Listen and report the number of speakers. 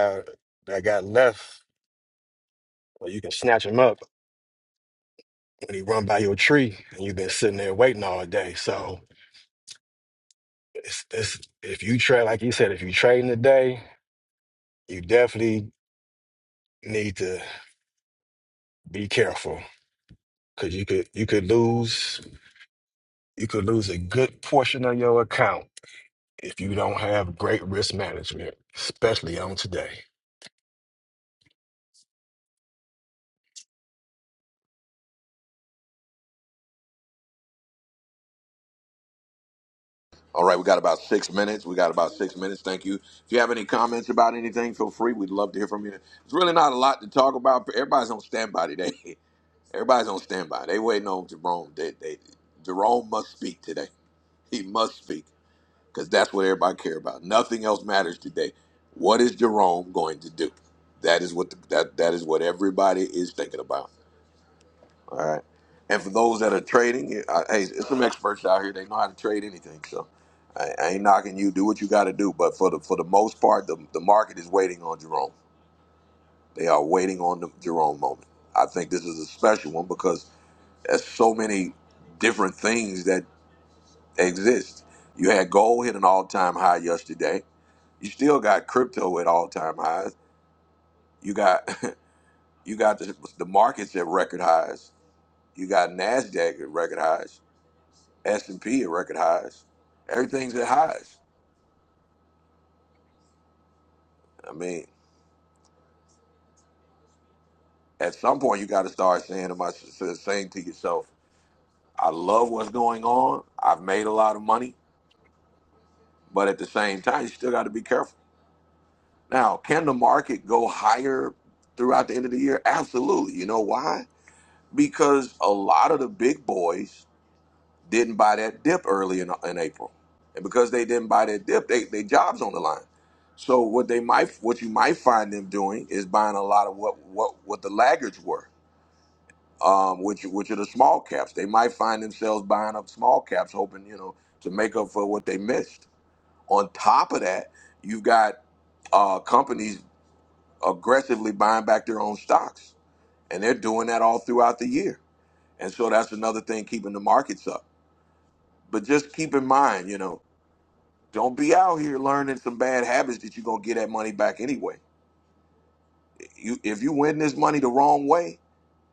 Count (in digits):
2